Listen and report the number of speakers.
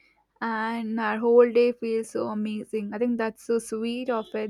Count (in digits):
1